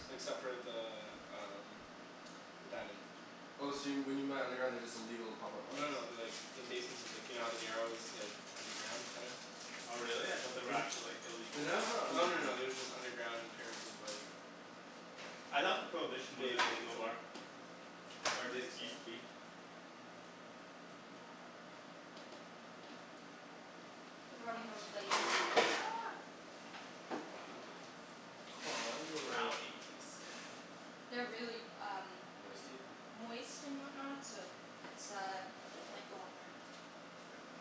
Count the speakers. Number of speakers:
4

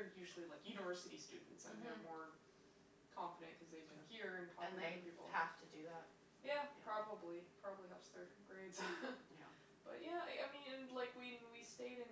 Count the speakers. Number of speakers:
2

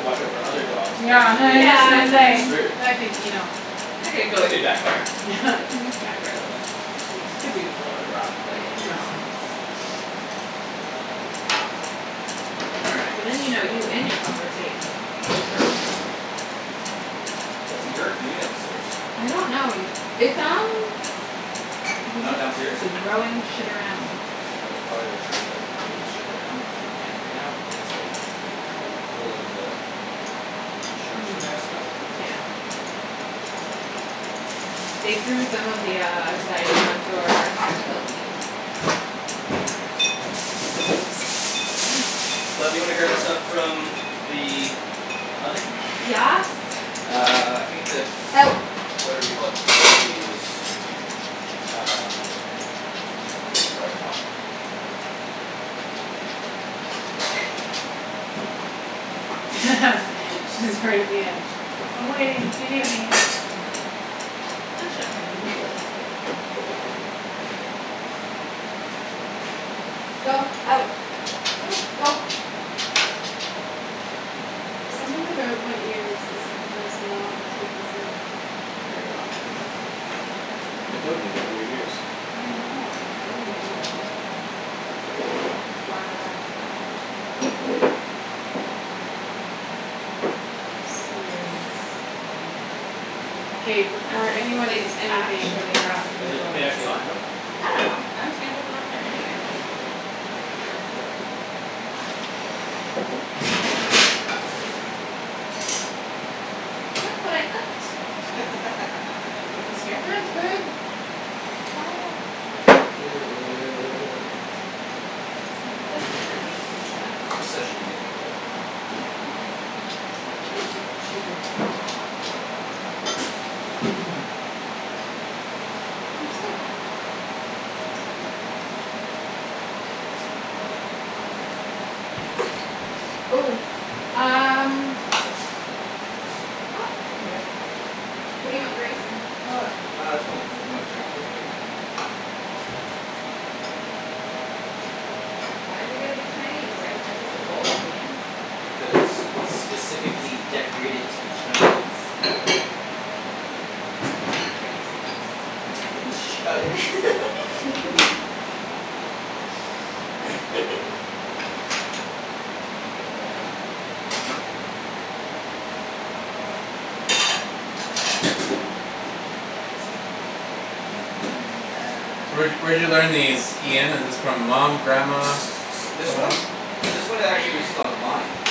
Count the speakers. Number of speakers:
4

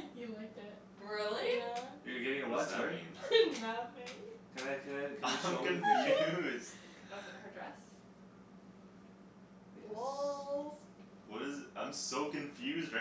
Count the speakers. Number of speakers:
4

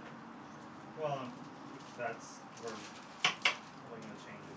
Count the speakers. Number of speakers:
1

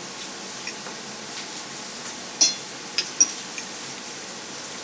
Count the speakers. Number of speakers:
0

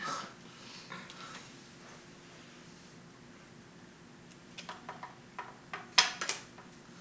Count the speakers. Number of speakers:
0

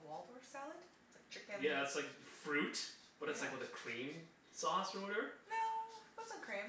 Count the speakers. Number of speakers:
2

